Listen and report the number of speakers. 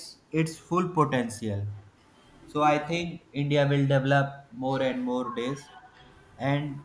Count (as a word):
one